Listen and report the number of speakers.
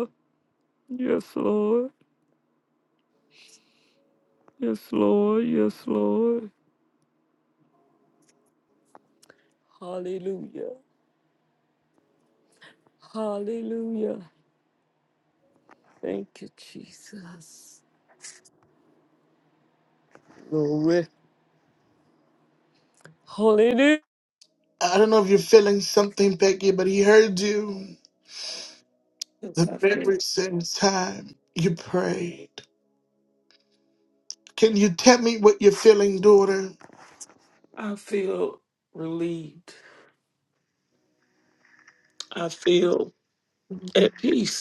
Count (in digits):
3